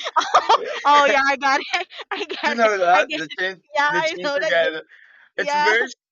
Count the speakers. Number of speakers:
2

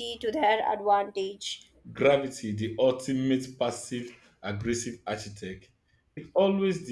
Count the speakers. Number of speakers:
2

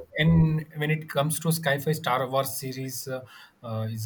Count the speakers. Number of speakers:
1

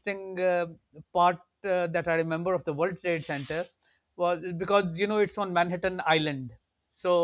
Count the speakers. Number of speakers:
1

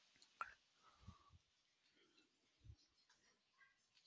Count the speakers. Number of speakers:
0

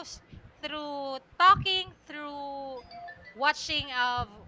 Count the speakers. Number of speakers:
1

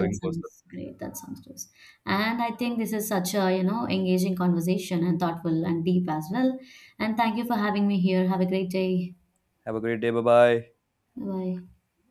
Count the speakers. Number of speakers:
2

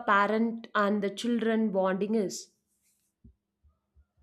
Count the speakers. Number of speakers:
1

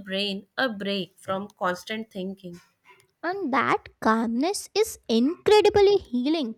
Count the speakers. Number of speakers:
2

